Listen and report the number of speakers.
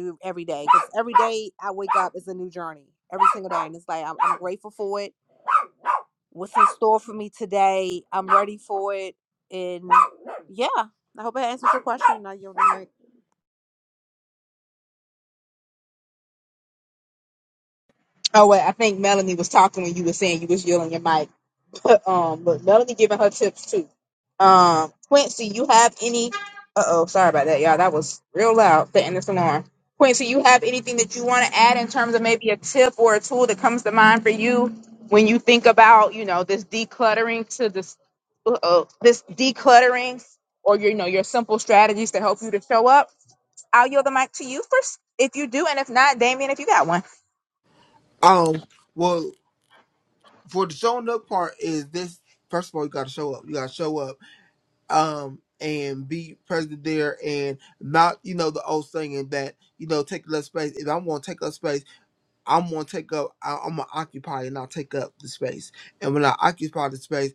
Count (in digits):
3